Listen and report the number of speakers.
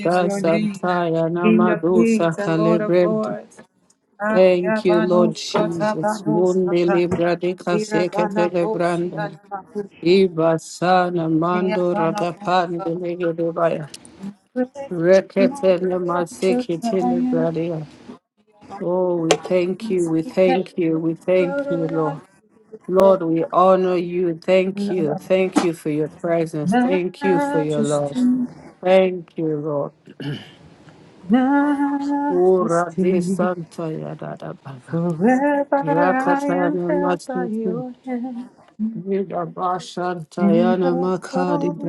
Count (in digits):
2